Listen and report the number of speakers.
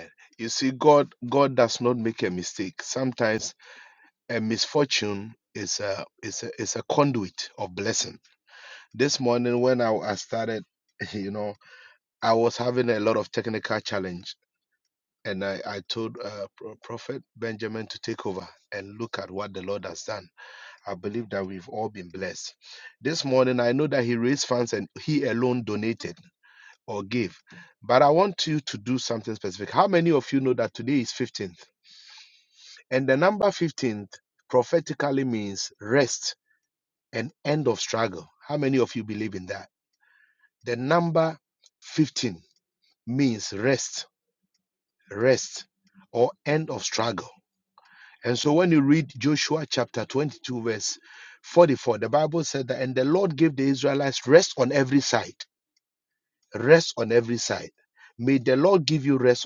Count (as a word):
one